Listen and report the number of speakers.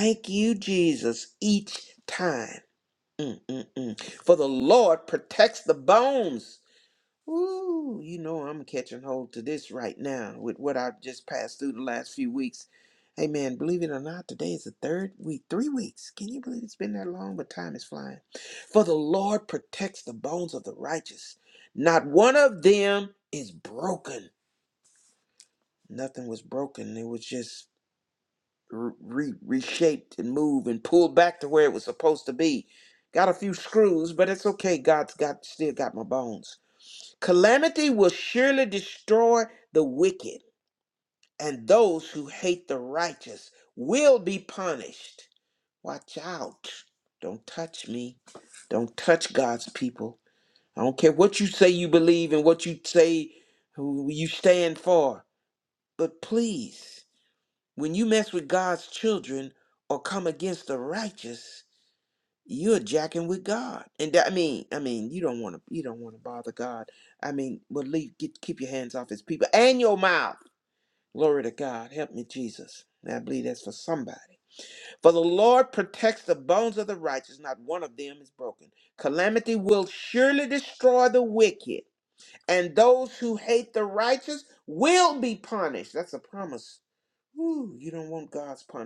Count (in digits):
1